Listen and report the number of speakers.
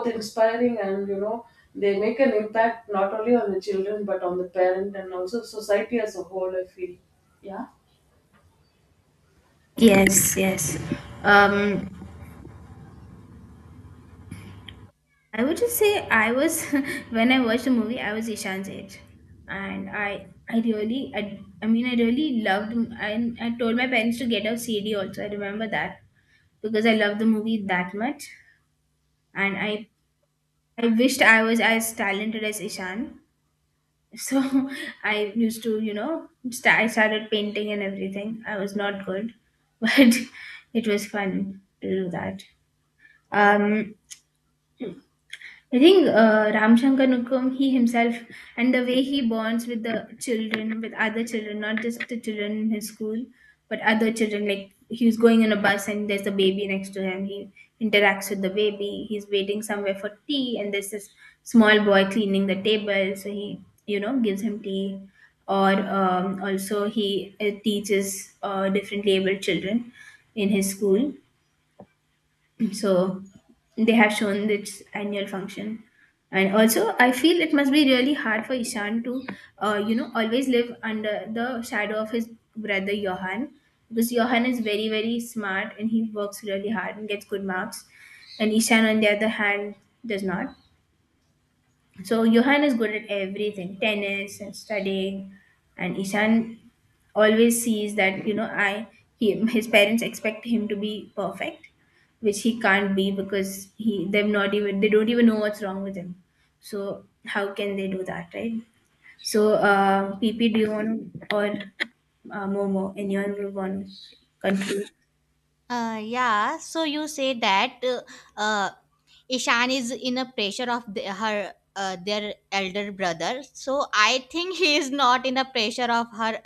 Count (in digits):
3